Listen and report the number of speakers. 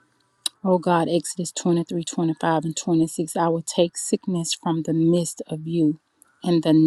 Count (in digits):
1